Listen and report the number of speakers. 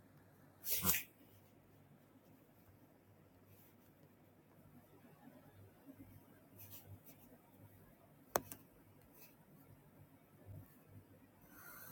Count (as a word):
zero